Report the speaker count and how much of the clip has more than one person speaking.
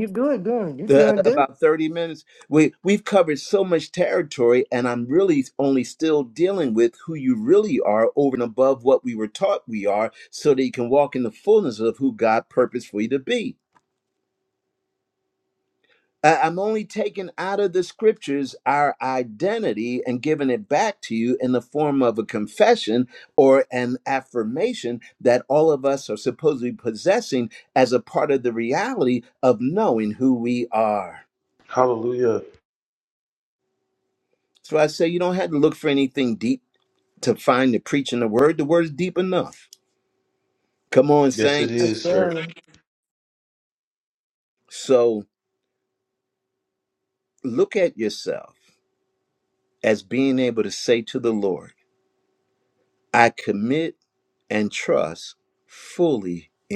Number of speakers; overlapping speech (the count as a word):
three, about 3%